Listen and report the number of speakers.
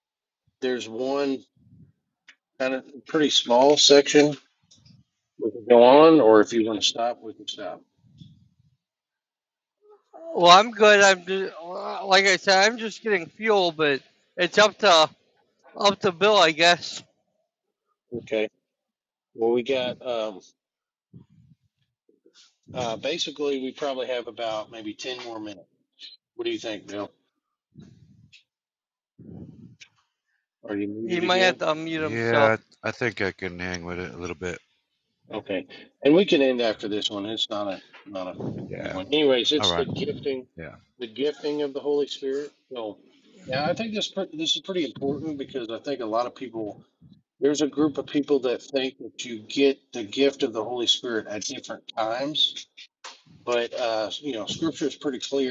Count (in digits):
3